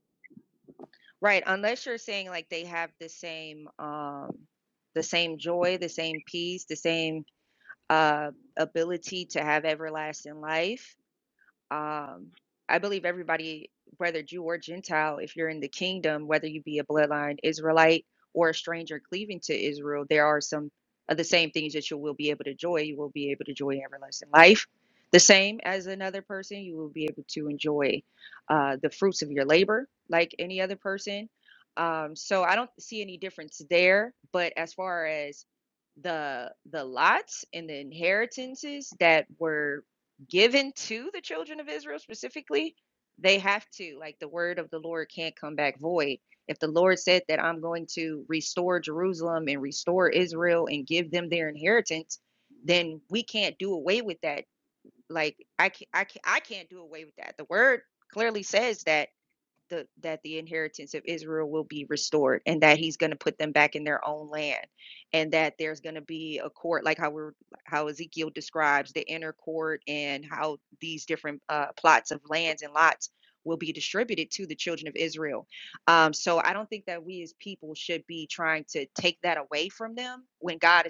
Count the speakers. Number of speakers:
one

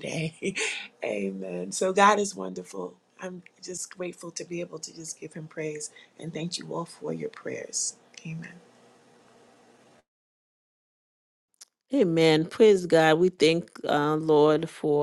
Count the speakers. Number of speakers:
two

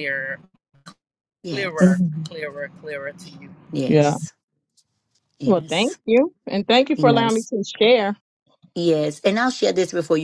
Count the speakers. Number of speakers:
three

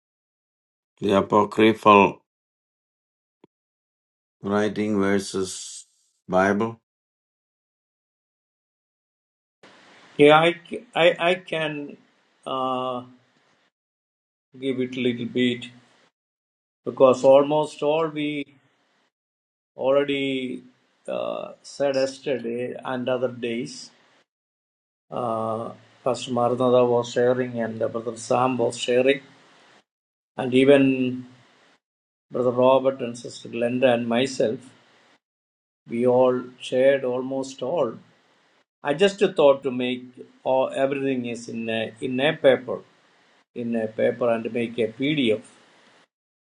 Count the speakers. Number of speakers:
two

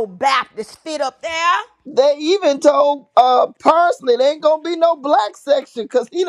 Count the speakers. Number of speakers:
two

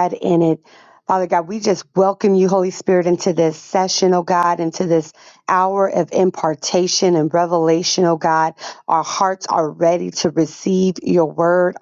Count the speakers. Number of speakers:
one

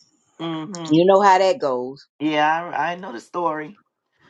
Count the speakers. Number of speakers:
two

